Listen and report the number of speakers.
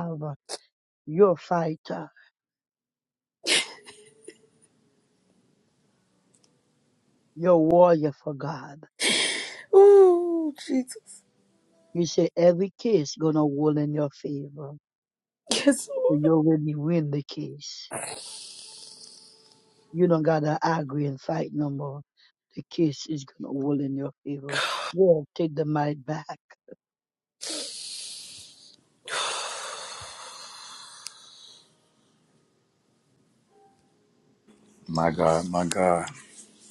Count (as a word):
three